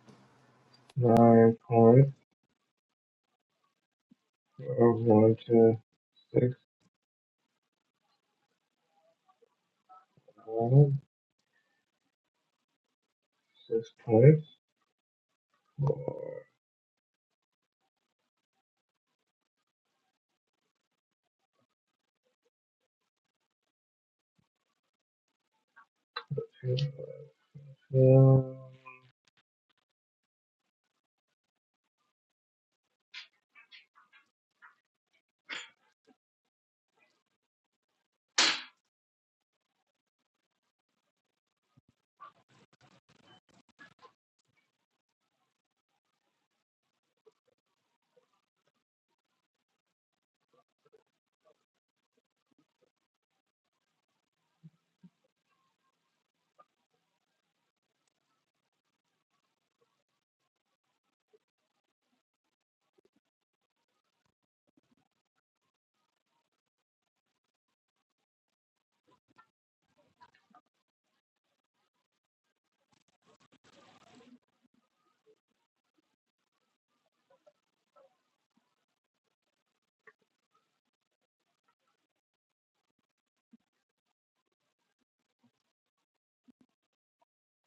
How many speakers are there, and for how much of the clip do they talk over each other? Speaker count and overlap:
1, no overlap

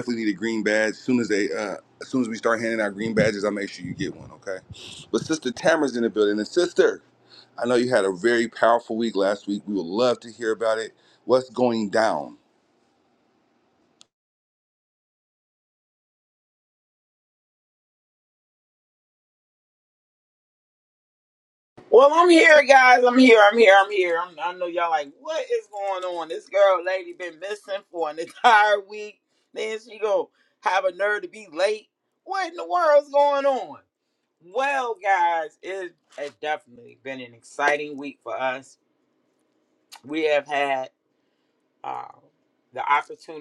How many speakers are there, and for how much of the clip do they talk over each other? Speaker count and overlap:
2, no overlap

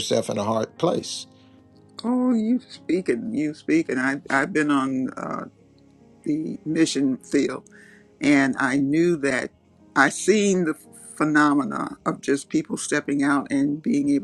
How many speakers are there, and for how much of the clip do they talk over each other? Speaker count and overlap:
2, no overlap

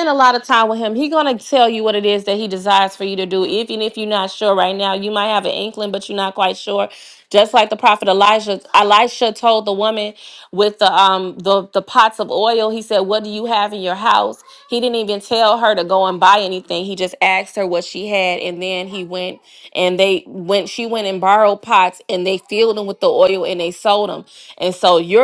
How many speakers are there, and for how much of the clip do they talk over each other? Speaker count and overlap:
1, no overlap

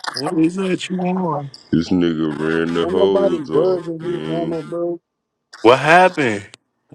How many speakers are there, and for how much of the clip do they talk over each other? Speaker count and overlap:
3, about 26%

